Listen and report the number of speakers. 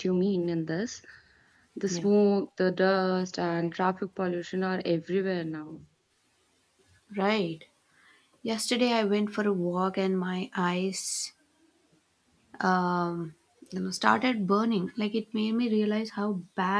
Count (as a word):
two